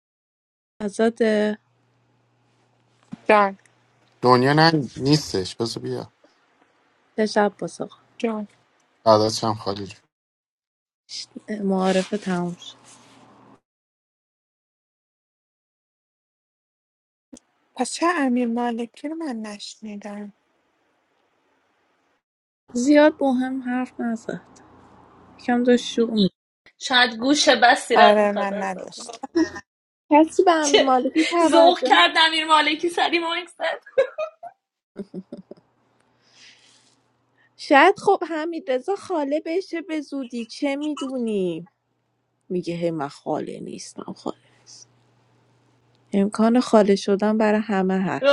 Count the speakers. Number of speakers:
four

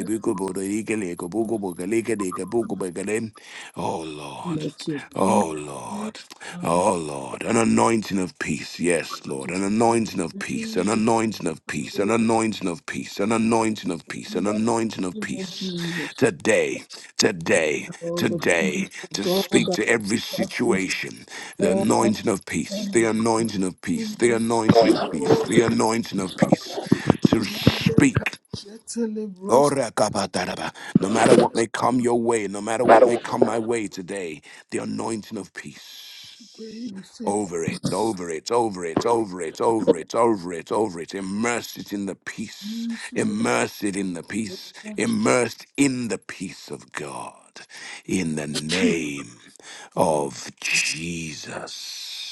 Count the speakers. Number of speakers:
two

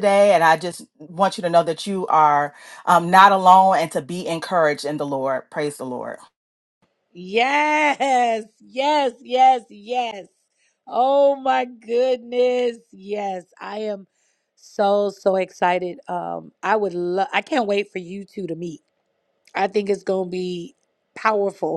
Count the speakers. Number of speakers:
two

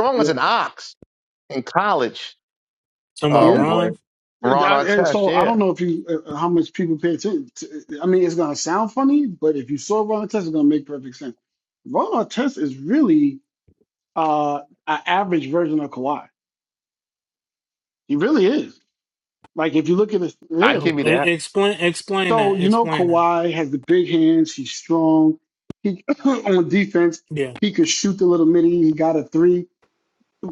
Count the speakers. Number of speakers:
three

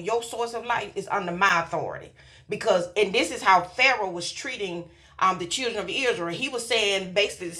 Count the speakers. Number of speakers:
one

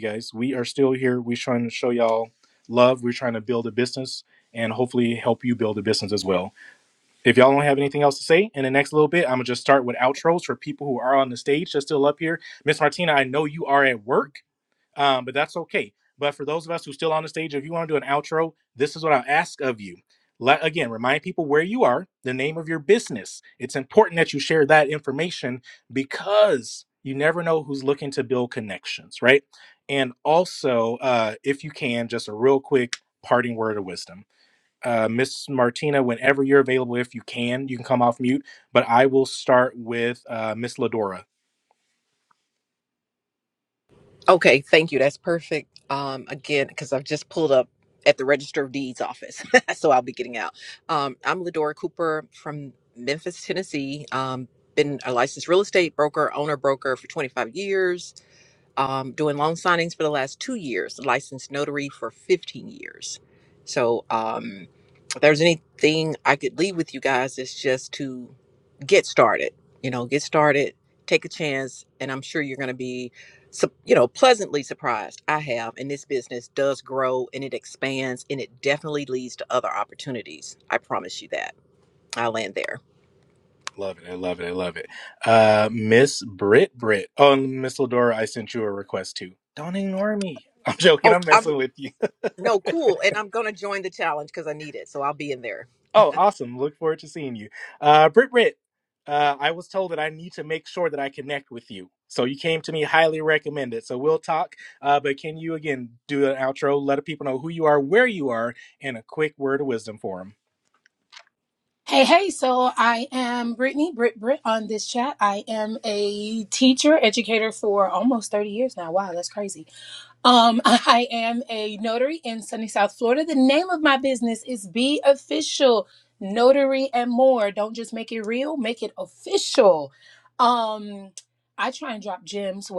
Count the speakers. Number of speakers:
three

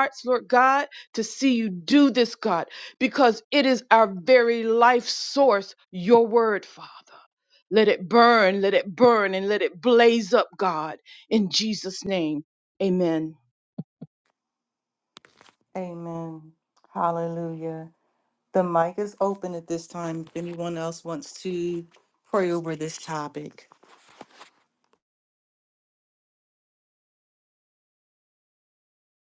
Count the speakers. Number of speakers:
two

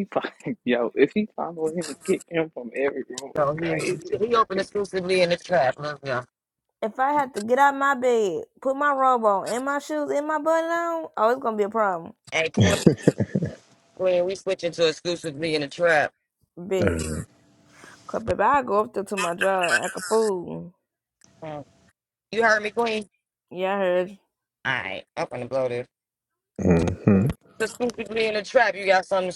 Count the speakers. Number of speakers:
four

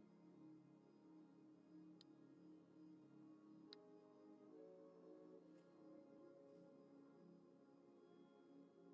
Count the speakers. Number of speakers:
zero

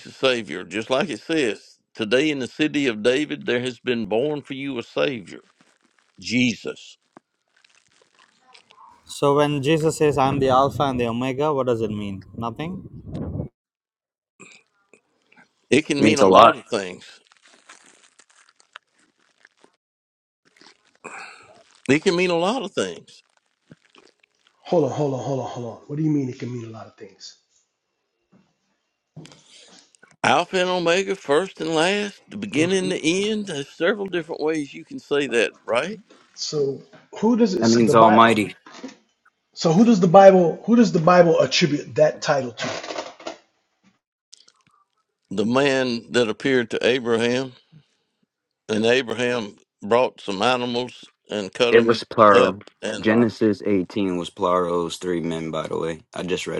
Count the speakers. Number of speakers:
four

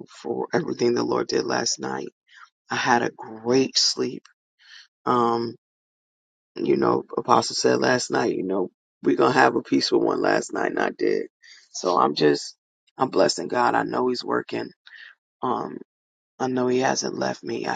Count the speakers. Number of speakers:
one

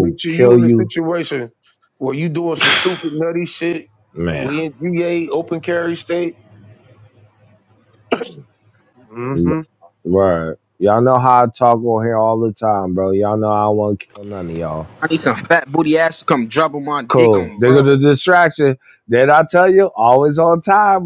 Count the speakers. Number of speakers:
three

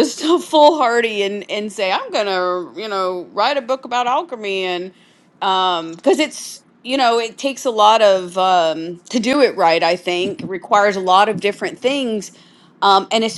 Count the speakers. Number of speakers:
one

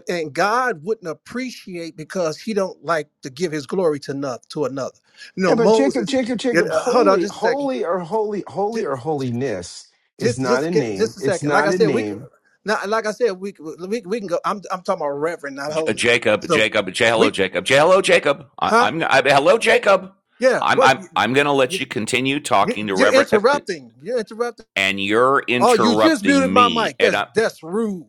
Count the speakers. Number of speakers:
three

